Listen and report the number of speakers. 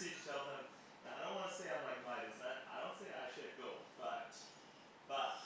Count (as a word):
one